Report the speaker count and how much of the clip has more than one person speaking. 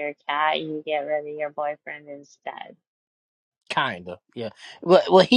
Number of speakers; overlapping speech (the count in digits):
2, no overlap